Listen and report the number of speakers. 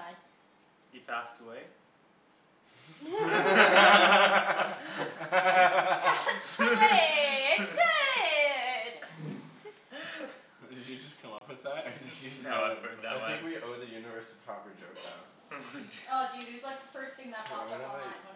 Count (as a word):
four